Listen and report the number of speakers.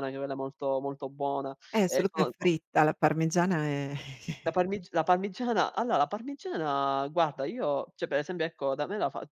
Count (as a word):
two